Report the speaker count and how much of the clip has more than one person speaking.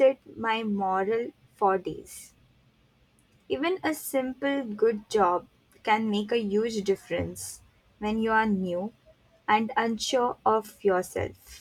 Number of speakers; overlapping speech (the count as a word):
one, no overlap